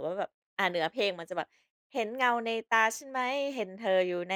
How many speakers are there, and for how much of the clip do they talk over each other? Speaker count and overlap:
1, no overlap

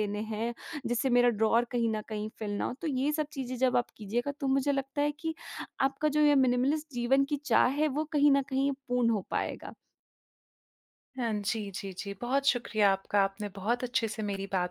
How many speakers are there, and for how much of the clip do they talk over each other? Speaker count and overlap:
2, no overlap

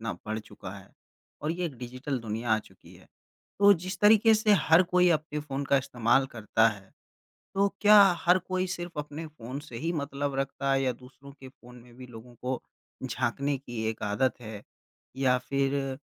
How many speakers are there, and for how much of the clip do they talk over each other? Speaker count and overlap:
1, no overlap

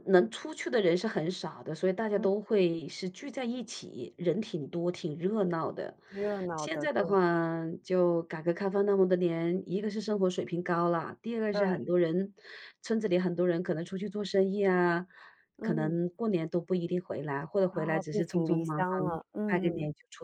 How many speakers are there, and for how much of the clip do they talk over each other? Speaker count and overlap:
2, about 16%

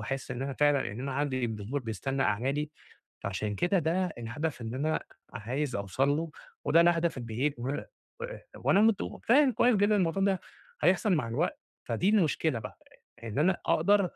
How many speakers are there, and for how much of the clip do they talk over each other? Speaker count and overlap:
1, no overlap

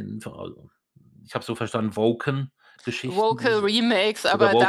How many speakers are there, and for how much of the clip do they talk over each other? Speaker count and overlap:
2, about 17%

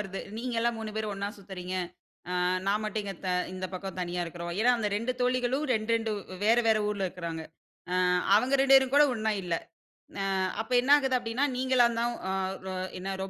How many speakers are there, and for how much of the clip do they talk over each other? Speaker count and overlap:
1, no overlap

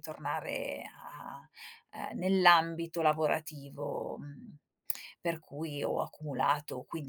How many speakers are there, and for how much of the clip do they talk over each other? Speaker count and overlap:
1, no overlap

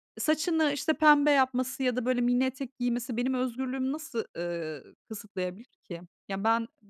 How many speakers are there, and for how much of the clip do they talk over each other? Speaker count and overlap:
1, no overlap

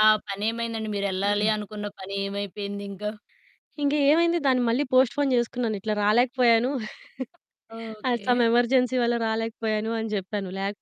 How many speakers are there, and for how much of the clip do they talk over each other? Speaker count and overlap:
2, about 4%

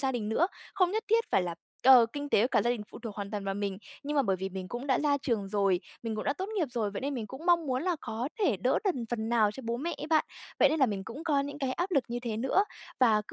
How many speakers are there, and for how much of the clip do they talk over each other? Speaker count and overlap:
1, no overlap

